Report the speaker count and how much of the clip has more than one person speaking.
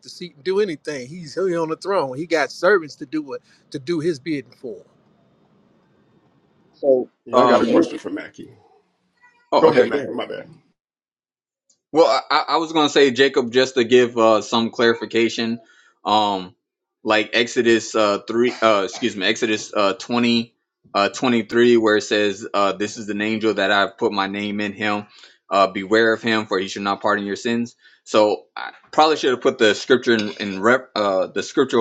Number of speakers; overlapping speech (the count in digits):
3, about 3%